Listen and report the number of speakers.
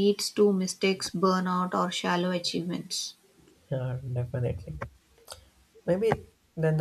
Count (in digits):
2